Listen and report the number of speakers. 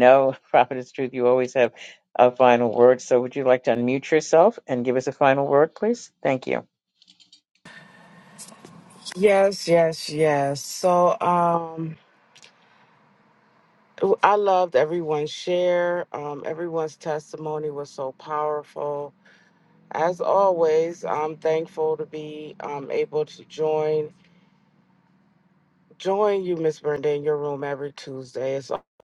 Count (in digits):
2